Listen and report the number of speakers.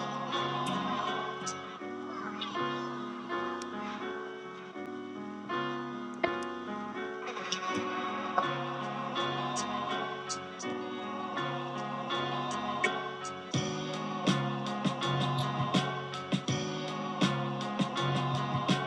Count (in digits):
0